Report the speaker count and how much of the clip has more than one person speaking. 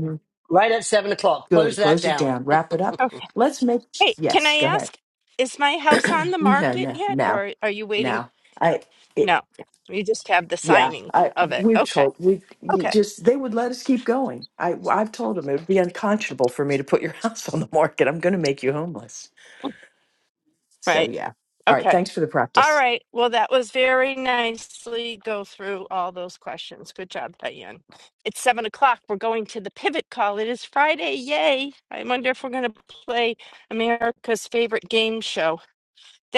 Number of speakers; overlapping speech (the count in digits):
3, about 14%